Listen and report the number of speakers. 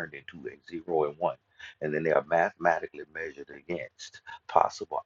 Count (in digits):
1